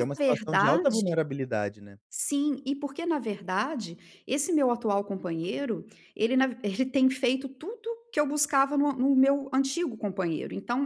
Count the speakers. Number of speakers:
two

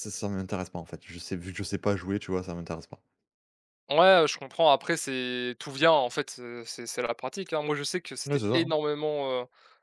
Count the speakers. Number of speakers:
two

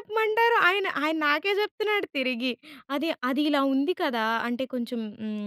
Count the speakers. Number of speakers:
one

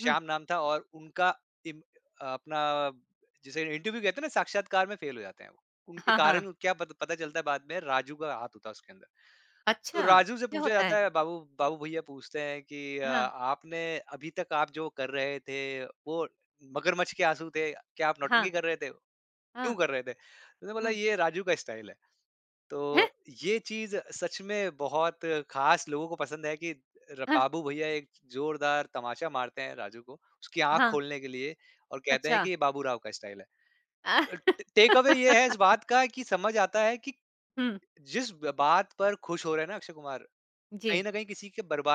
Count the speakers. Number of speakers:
two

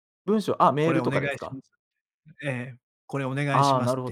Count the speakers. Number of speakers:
two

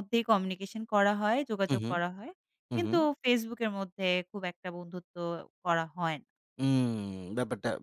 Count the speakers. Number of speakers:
two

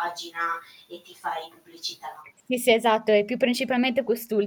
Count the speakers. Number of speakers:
two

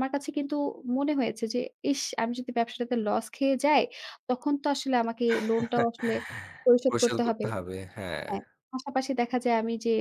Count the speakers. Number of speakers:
two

